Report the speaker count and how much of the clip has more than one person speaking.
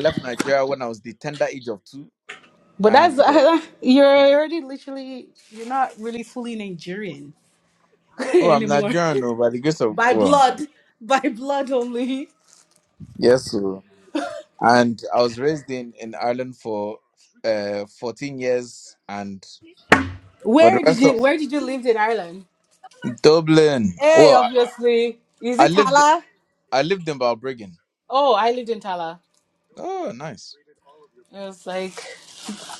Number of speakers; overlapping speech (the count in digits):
2, about 9%